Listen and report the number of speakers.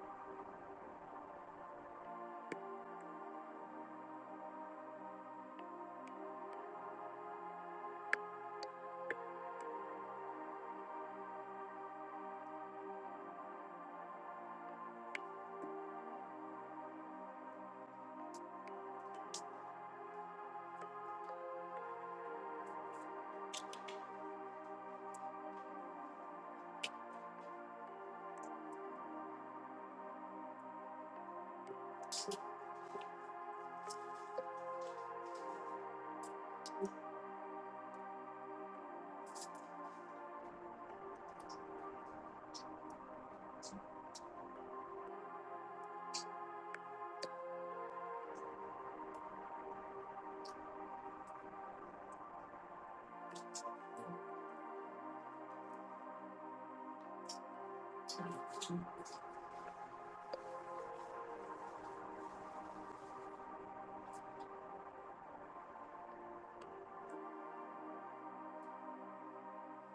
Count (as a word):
zero